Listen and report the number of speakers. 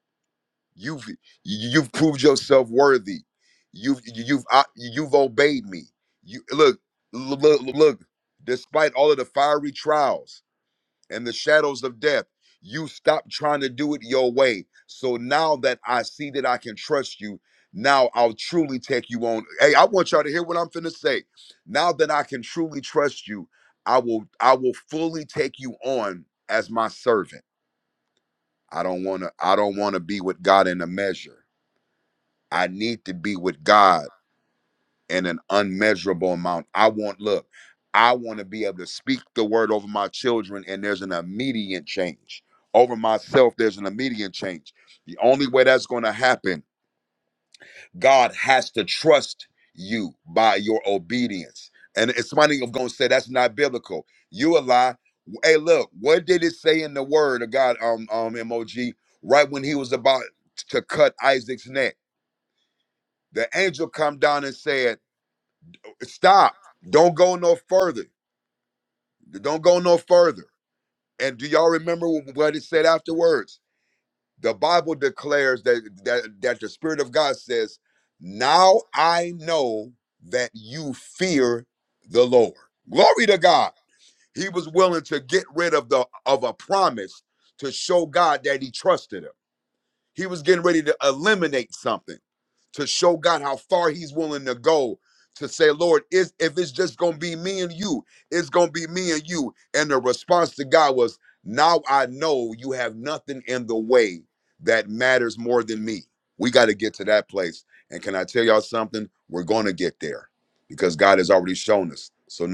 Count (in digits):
1